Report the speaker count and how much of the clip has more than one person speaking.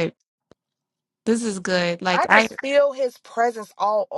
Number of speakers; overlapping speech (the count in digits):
2, about 10%